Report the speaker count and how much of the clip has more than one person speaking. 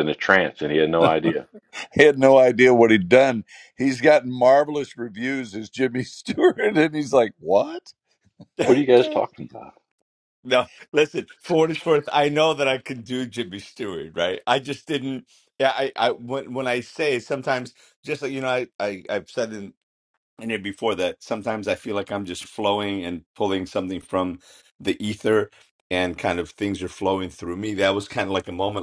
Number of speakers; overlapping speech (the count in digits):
3, about 2%